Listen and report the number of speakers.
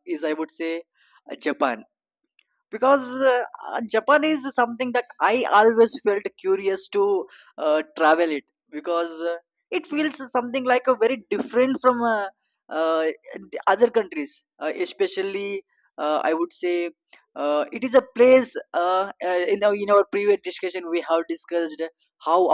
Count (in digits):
1